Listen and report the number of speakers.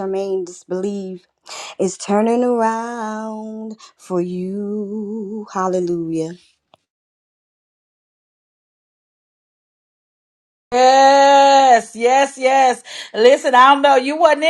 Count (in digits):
2